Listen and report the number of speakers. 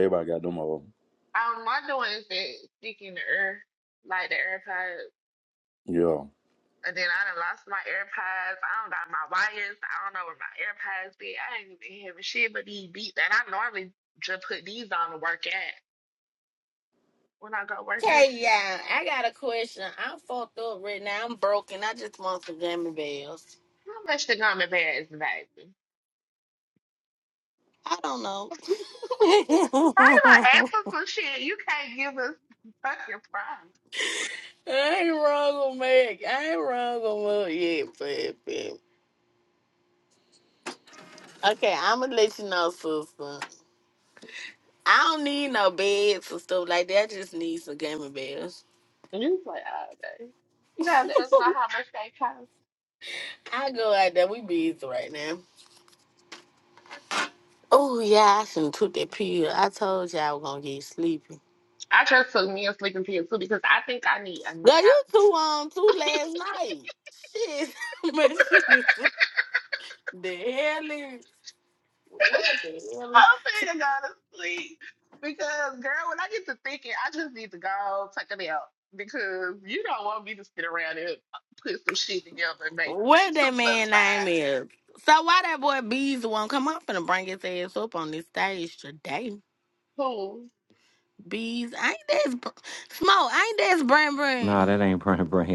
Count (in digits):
4